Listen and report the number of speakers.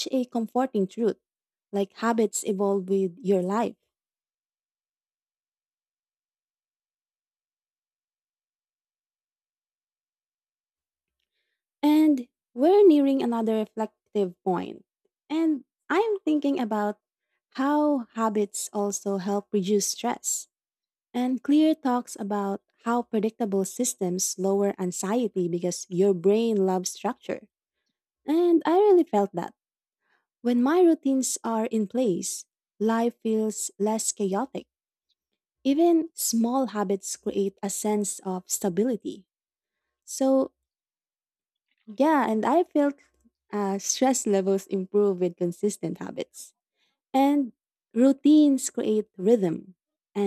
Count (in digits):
1